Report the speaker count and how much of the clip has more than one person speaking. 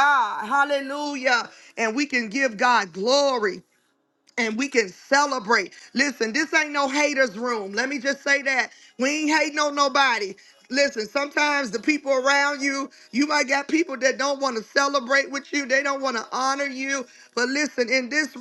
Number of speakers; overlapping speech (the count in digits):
1, no overlap